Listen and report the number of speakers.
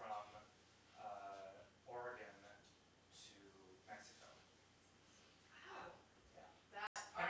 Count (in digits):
2